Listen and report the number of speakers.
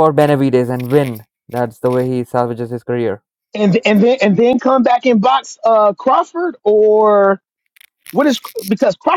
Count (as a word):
two